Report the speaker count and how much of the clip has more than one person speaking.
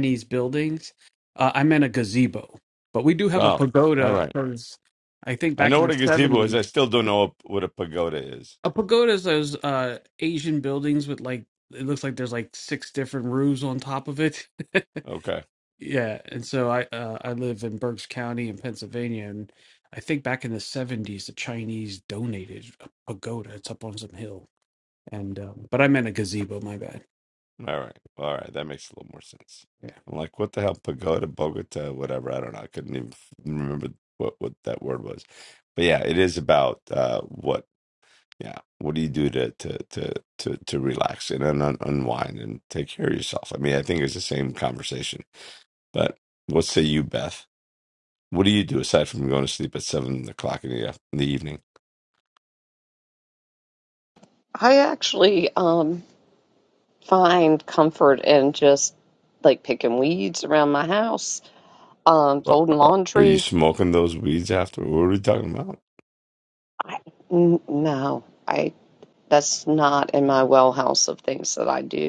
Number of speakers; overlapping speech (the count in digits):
3, about 3%